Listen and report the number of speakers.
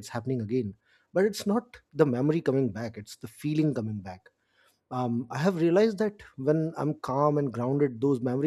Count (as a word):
one